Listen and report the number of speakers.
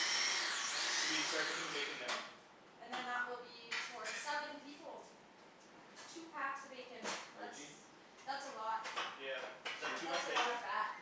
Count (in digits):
3